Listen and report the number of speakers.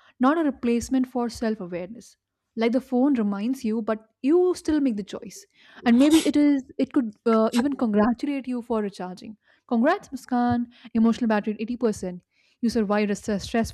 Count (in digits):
1